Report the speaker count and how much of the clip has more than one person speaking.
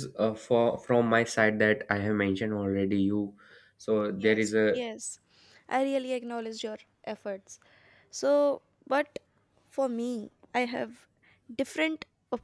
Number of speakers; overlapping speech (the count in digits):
2, about 2%